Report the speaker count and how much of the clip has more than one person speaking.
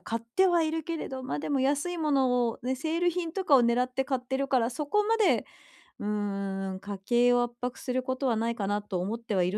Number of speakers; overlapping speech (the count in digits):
1, no overlap